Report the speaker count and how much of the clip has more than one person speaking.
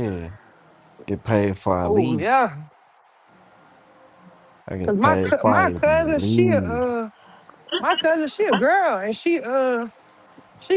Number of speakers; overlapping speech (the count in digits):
2, about 23%